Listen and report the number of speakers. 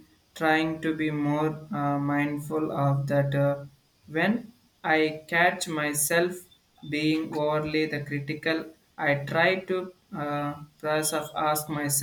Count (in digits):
1